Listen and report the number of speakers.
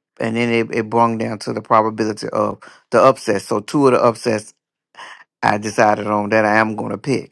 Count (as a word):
one